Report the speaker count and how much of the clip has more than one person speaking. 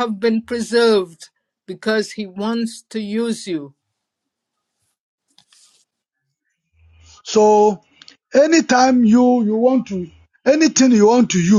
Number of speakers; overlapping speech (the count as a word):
two, no overlap